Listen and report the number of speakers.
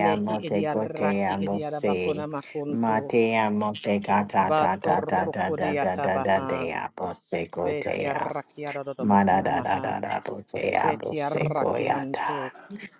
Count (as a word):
two